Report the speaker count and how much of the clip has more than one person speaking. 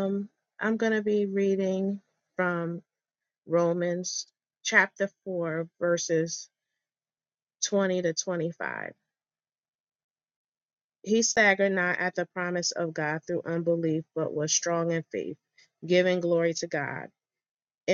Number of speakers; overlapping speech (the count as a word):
one, no overlap